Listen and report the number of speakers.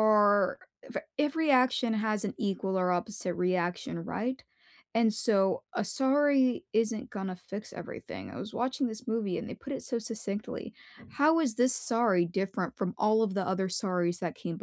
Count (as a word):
one